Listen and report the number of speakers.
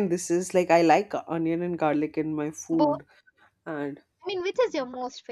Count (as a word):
two